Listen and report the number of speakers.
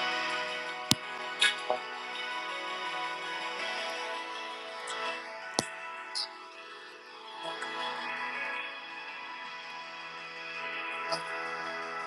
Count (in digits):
0